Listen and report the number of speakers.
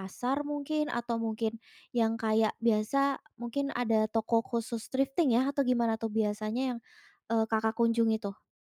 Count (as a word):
one